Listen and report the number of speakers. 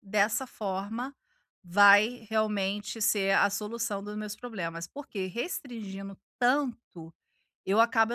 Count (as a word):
one